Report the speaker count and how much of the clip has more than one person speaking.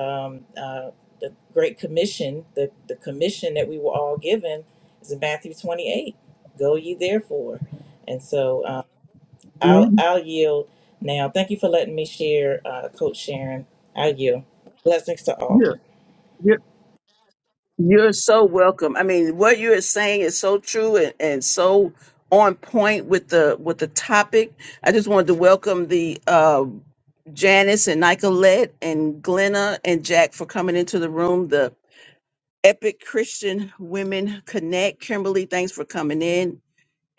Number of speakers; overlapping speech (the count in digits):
2, about 2%